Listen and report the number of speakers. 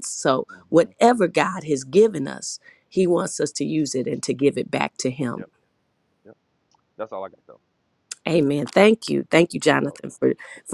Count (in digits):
2